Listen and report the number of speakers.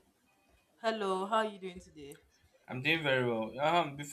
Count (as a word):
two